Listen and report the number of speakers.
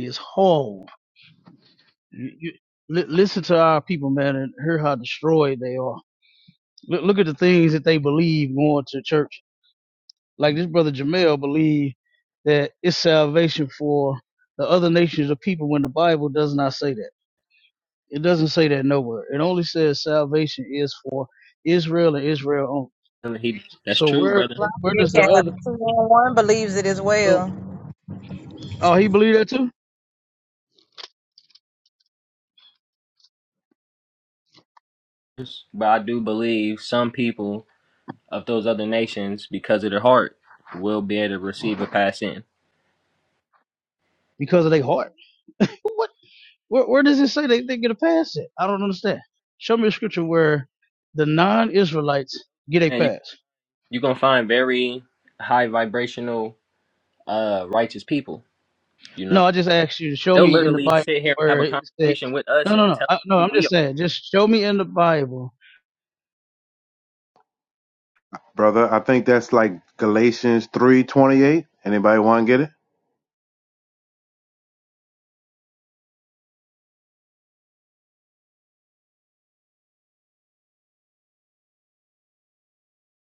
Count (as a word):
four